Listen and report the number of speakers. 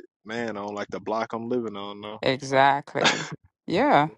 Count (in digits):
2